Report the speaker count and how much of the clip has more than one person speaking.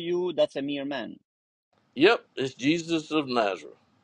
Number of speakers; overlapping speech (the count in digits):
2, no overlap